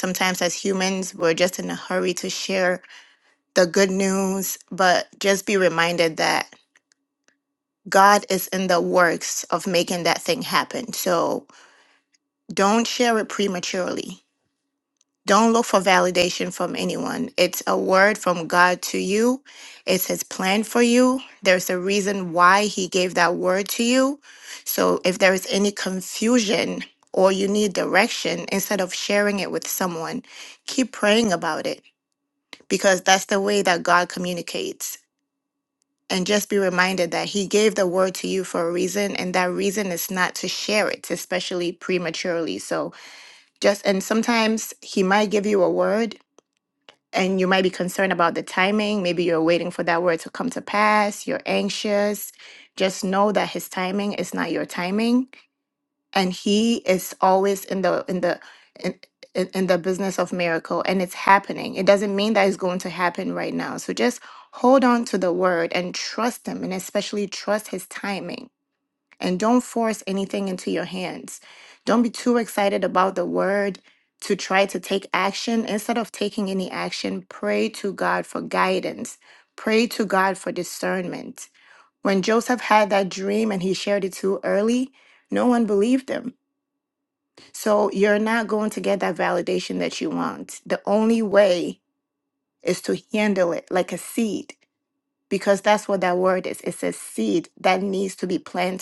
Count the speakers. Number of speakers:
1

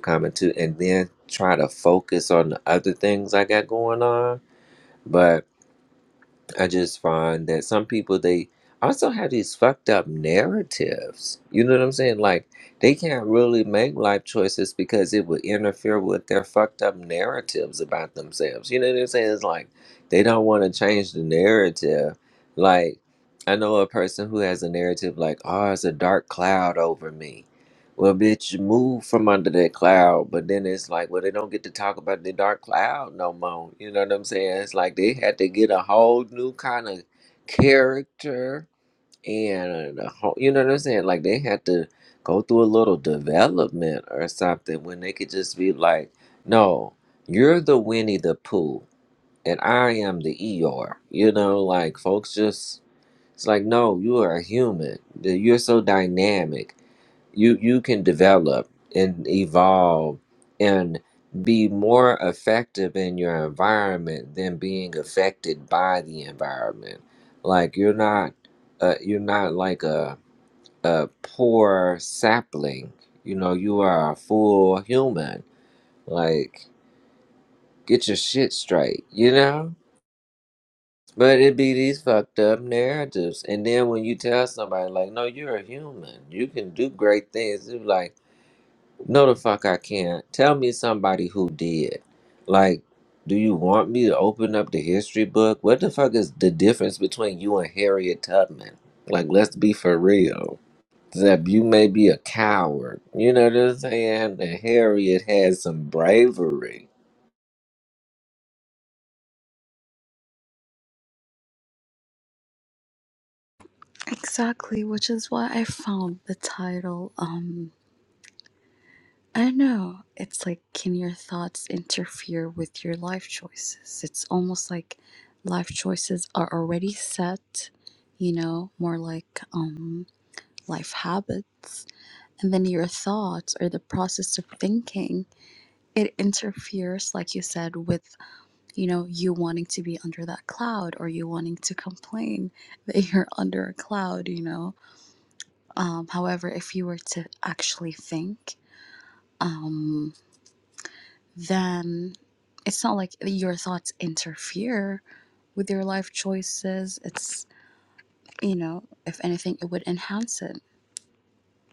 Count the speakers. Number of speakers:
2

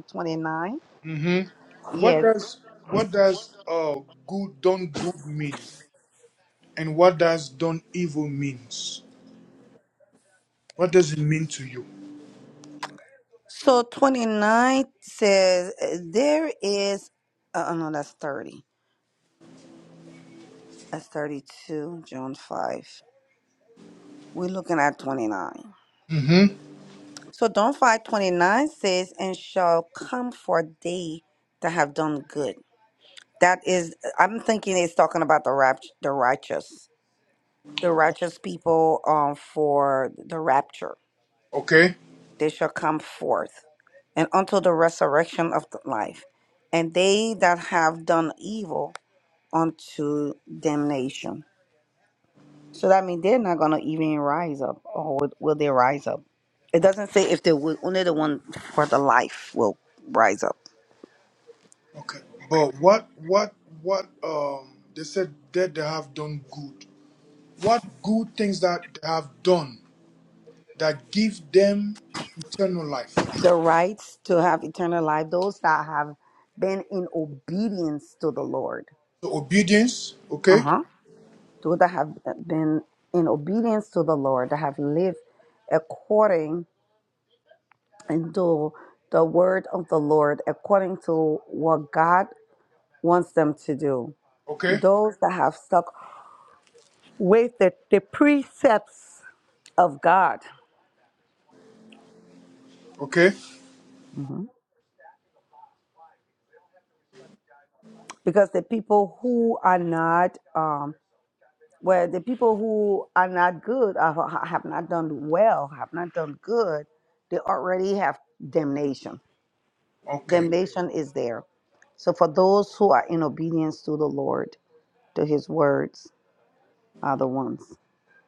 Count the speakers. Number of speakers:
2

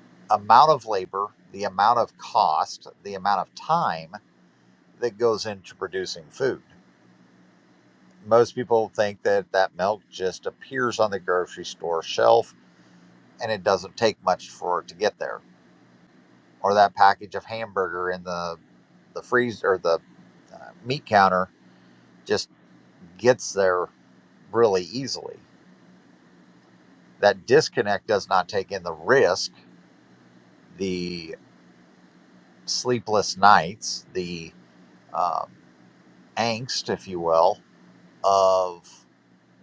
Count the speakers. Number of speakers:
1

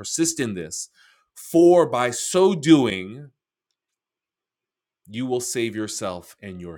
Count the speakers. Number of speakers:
1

